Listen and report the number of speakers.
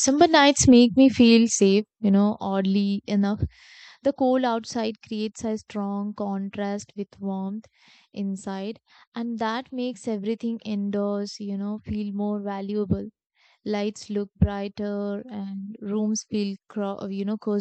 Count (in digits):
1